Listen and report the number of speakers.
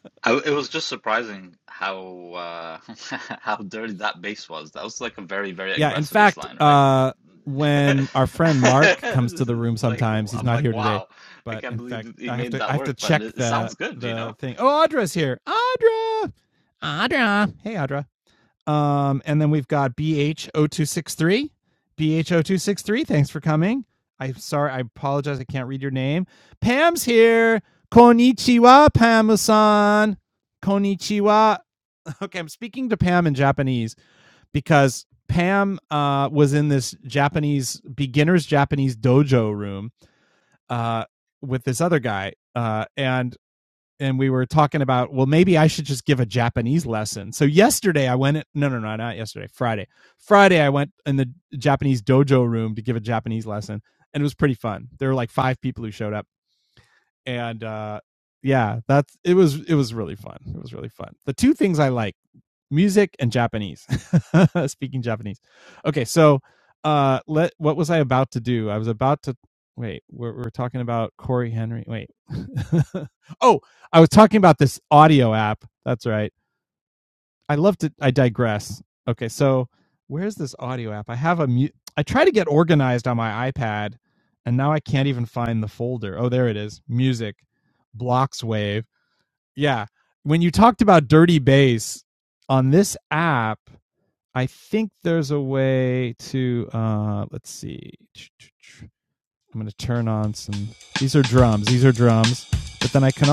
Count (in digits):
2